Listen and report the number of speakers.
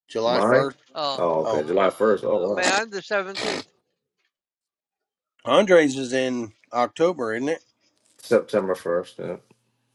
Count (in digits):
3